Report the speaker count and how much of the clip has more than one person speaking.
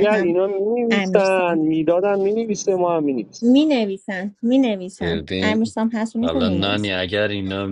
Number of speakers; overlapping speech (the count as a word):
three, about 31%